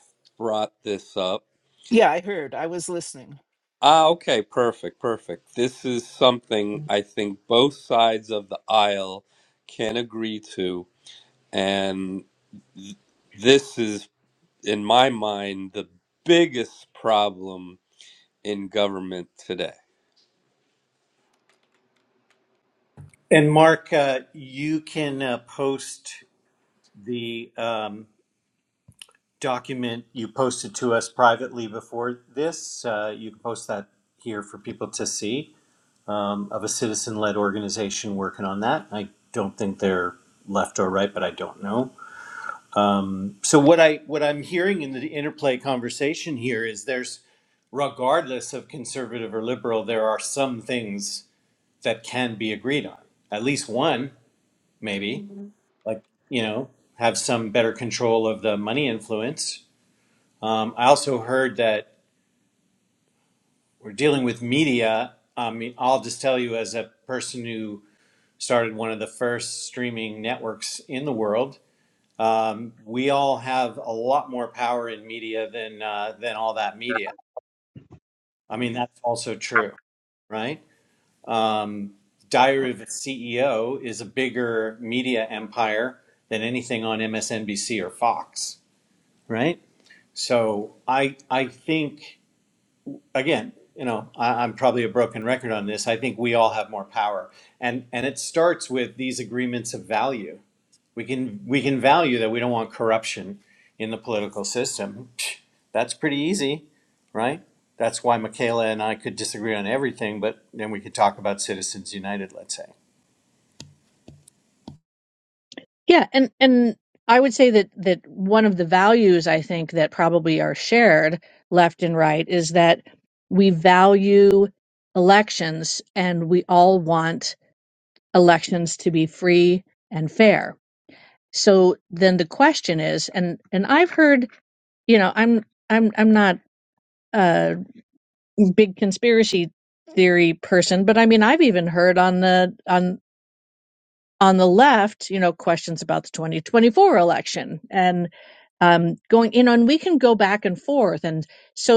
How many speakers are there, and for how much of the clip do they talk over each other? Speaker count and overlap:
4, no overlap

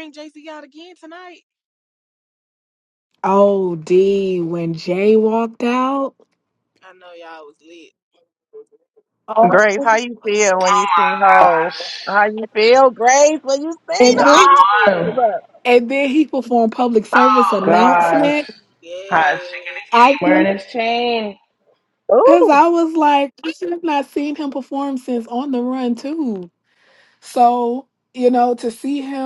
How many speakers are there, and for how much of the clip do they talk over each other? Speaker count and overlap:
4, about 15%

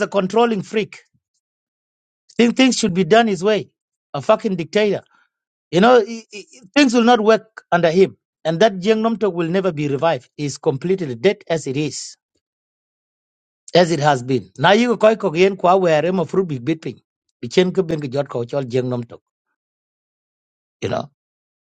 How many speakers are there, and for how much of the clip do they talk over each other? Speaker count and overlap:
1, no overlap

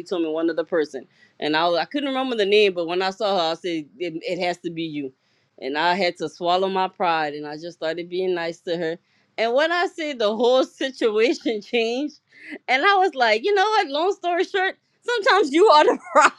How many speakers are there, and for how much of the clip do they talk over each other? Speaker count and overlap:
1, no overlap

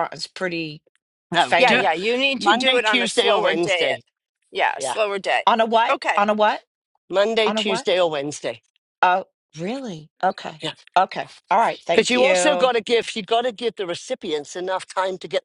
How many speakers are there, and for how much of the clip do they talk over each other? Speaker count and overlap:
3, about 24%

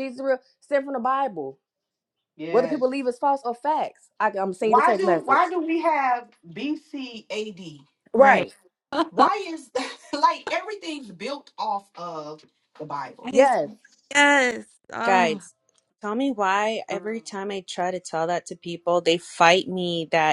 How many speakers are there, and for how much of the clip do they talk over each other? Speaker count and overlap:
4, about 9%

